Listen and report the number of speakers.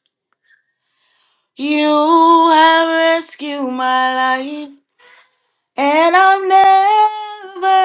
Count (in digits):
1